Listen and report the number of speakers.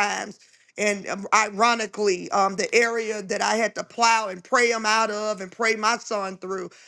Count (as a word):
one